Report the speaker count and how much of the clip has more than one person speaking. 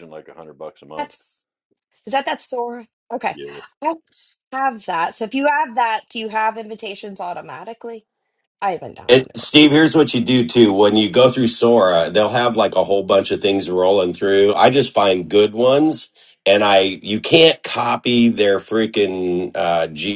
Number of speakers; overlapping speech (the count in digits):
3, about 4%